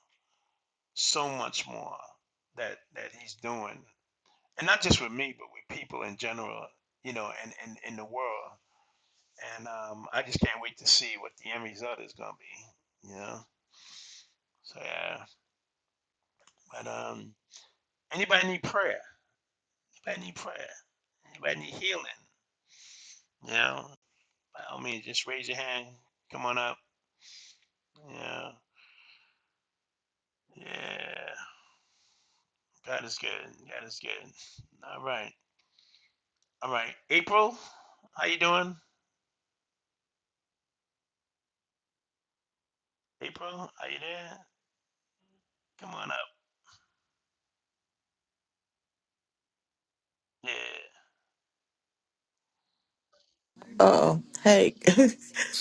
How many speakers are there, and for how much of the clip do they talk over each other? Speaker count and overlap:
2, no overlap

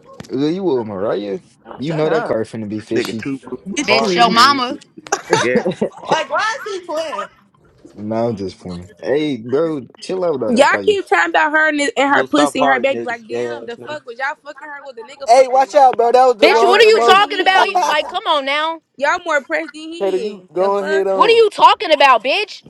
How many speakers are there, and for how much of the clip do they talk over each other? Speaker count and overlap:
6, about 32%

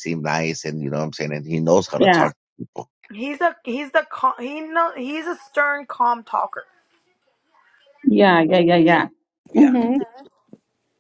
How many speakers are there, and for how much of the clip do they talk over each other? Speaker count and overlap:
3, about 5%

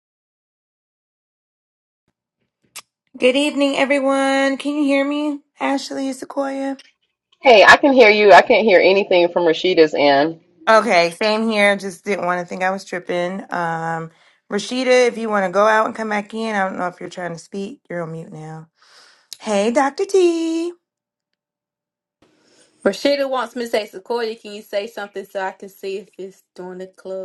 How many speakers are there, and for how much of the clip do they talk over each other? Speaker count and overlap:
3, no overlap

